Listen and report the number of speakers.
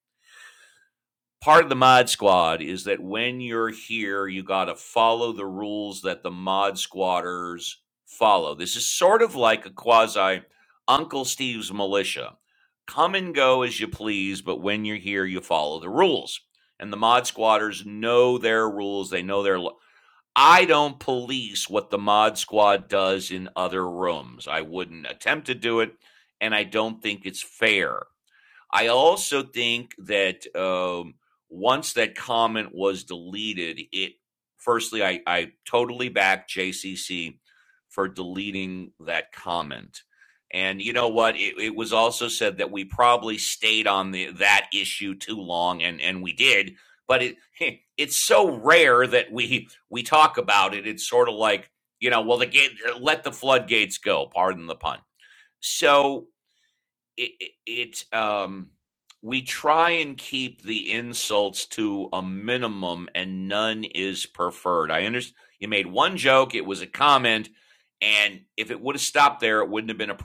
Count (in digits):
1